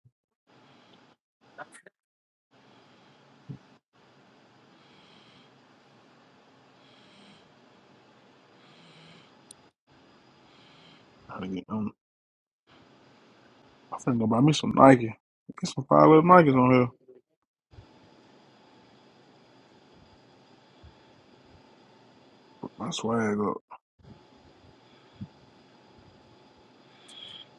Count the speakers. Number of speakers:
1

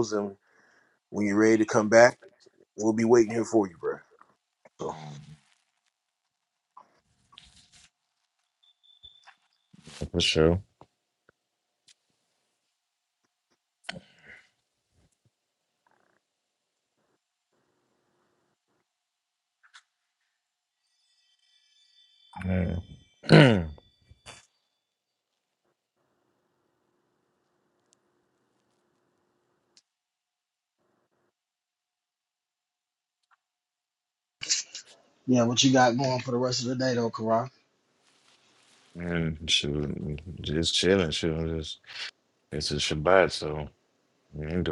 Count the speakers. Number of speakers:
3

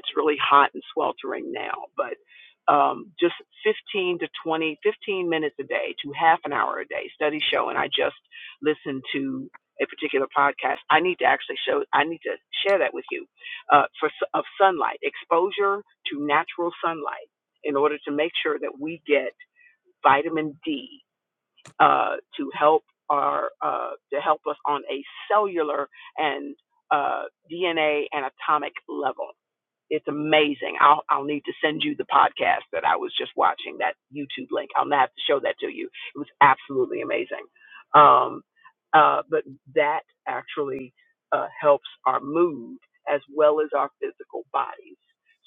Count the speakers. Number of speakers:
1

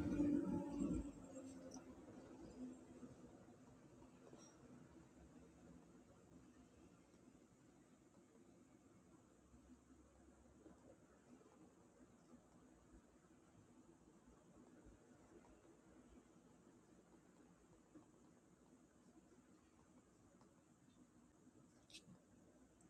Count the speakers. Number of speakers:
0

